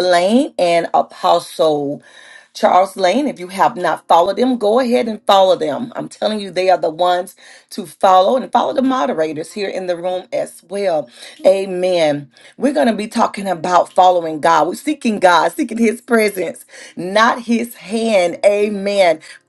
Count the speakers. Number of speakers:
1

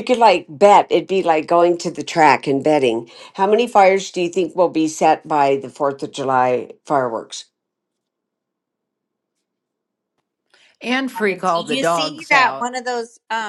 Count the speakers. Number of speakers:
3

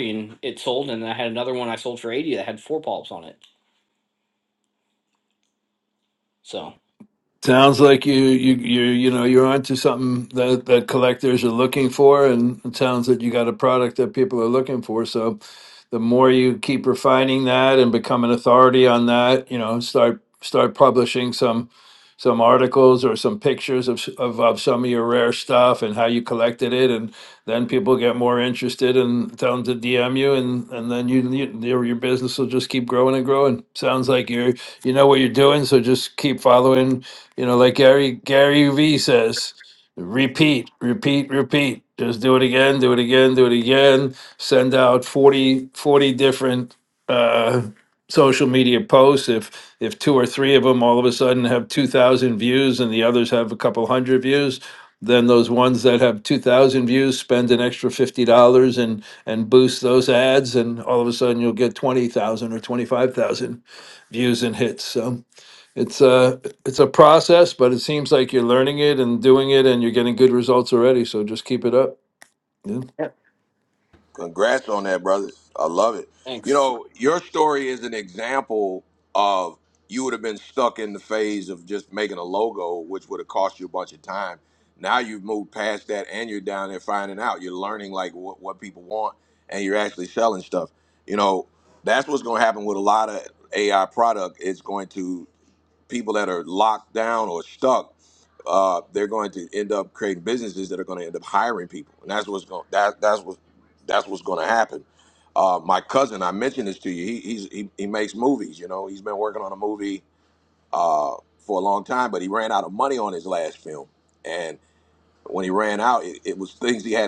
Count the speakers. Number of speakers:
3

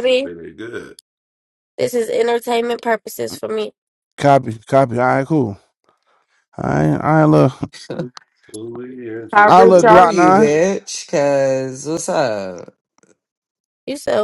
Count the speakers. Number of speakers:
4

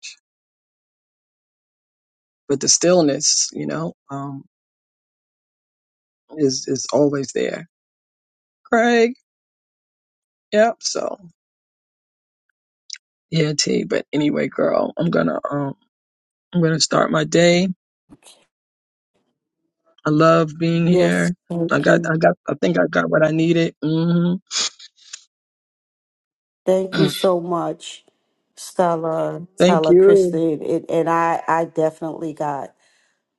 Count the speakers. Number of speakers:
2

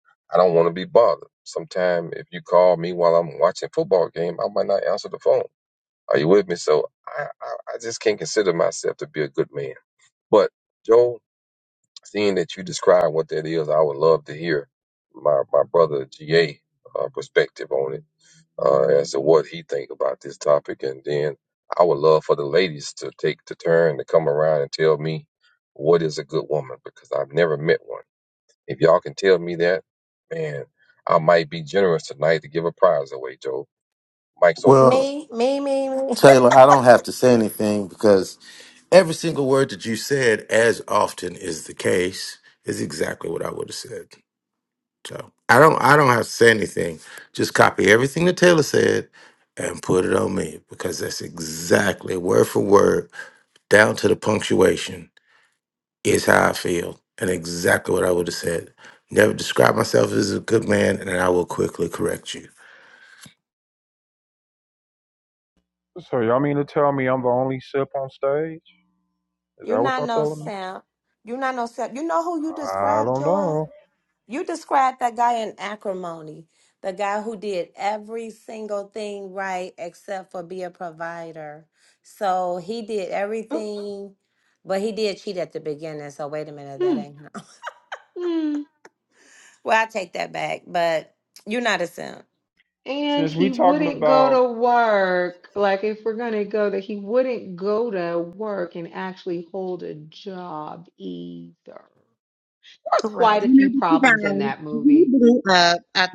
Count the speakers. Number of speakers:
6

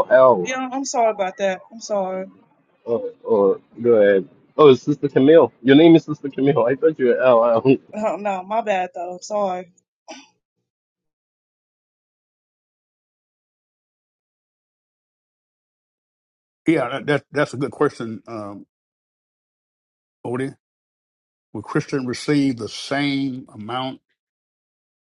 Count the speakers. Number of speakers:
3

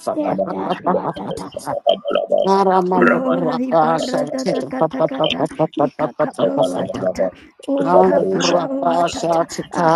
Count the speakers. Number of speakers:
3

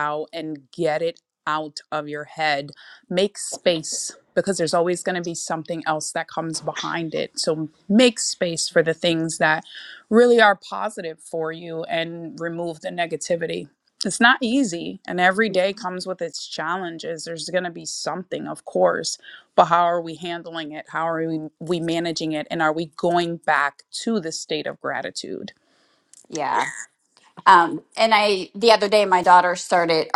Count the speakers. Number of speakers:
2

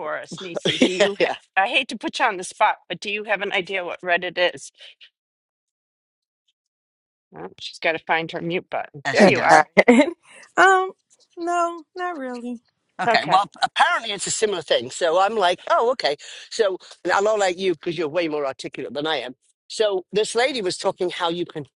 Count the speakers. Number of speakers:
3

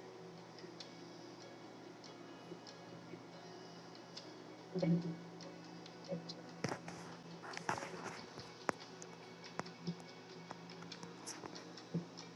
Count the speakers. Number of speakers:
0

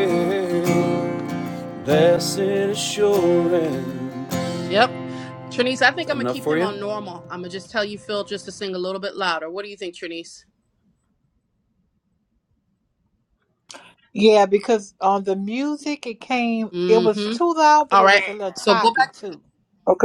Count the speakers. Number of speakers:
3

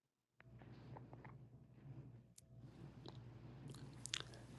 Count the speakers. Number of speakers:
0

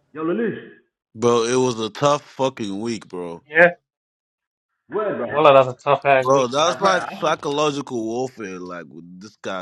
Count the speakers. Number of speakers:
3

